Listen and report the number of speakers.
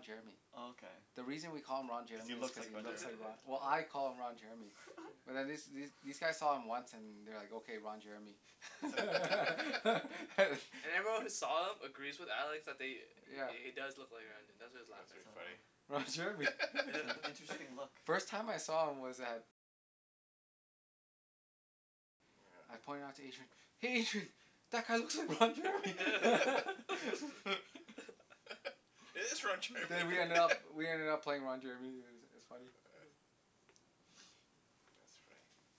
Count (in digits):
4